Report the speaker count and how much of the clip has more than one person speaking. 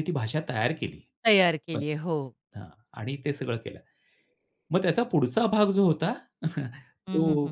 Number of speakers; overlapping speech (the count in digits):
2, about 7%